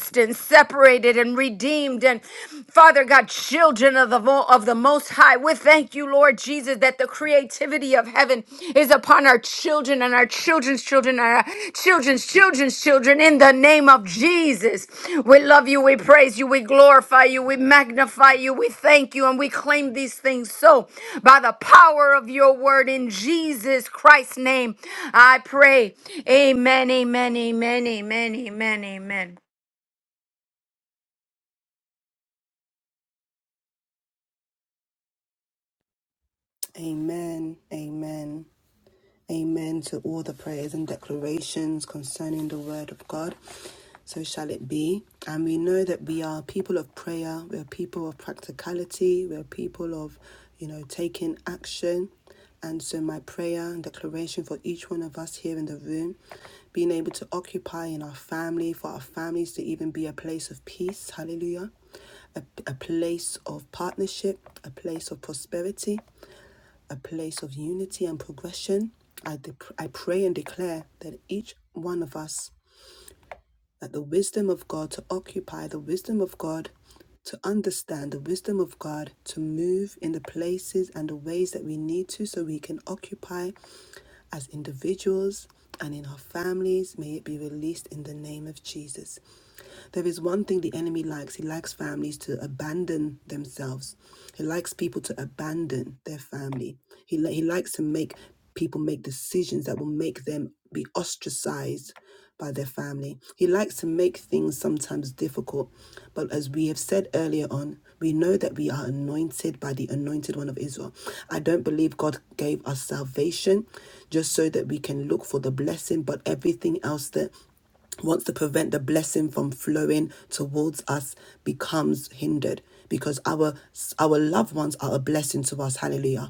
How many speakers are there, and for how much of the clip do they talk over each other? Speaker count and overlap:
2, no overlap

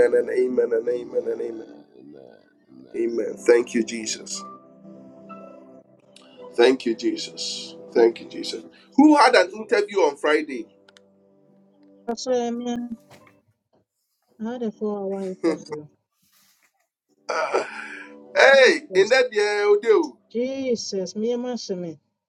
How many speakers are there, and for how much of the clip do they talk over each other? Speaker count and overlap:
3, about 21%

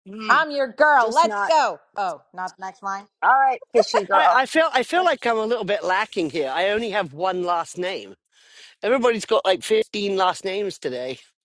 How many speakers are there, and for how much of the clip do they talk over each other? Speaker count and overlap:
3, about 8%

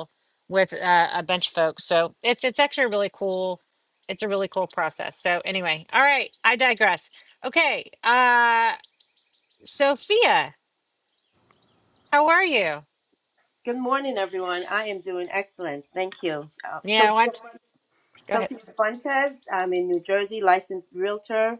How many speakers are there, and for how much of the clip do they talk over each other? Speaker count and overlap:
2, about 3%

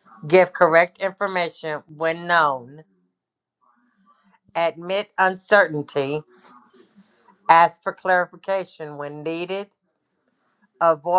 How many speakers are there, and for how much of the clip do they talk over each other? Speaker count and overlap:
1, no overlap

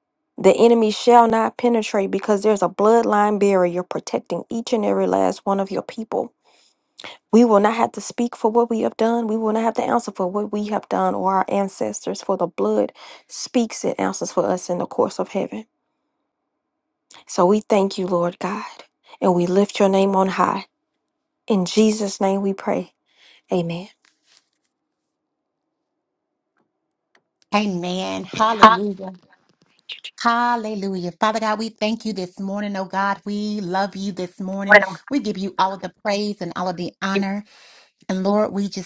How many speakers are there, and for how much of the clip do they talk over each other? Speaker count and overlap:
2, no overlap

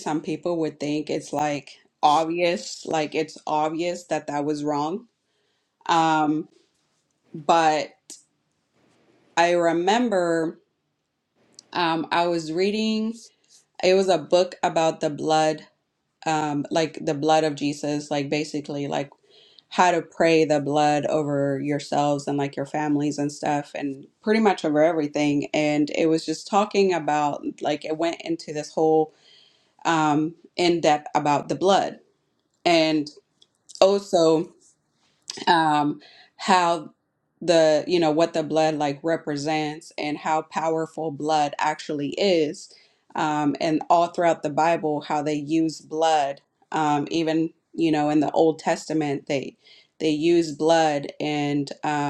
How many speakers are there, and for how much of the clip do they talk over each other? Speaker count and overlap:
1, no overlap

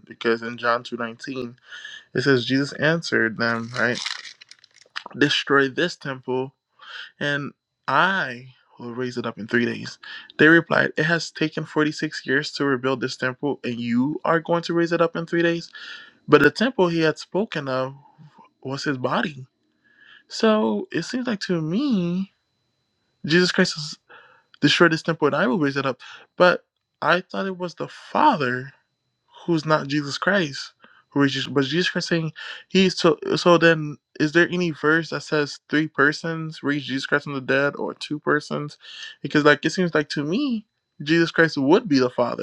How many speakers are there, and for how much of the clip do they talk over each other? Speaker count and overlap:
1, no overlap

